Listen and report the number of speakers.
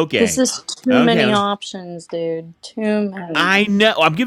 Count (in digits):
2